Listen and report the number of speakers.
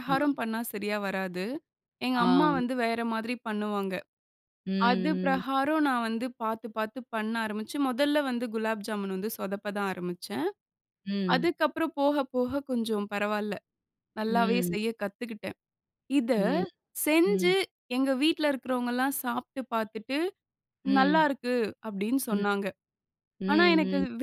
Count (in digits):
2